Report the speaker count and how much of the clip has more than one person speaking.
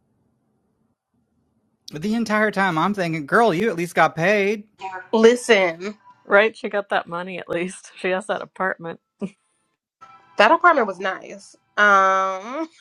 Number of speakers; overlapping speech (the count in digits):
3, no overlap